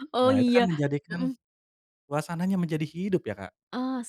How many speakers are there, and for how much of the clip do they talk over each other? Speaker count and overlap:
2, about 16%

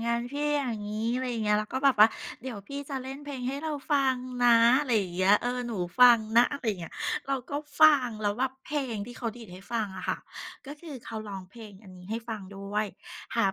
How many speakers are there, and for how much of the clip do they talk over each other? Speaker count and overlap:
1, no overlap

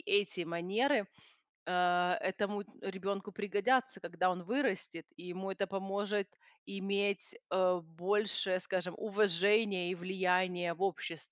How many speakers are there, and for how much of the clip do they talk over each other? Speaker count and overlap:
1, no overlap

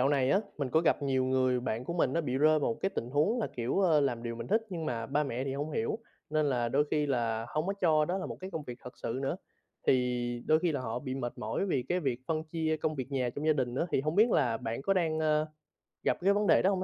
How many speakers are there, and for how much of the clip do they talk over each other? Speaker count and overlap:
1, no overlap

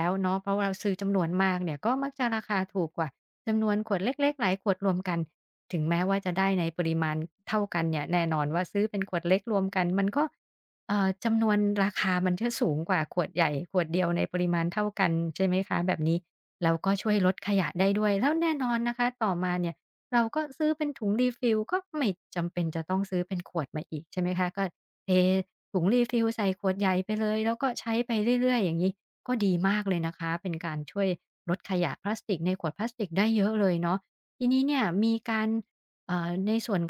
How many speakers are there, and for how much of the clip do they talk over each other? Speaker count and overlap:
1, no overlap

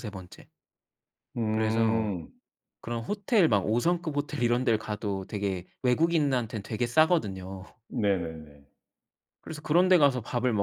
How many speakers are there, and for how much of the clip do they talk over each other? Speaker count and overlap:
2, about 5%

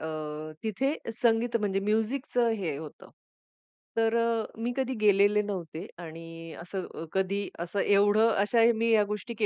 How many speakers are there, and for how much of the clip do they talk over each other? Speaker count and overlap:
1, no overlap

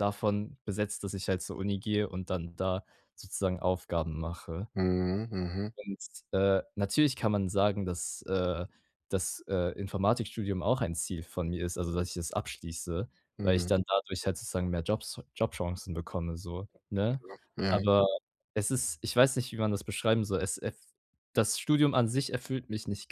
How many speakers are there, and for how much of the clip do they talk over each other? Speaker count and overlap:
2, about 2%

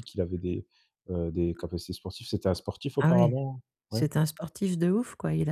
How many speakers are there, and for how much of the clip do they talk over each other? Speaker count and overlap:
2, about 8%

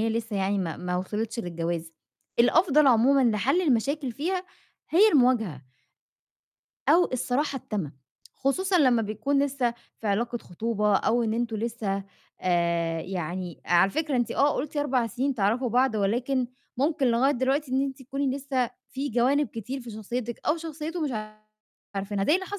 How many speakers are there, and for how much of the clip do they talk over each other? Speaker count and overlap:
1, no overlap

